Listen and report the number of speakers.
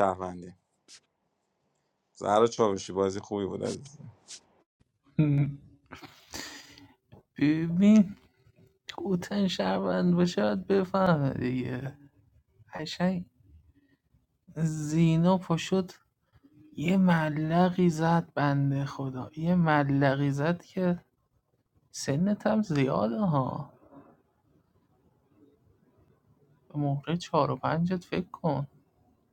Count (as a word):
two